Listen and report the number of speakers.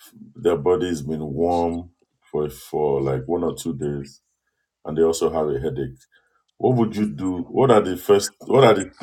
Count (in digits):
1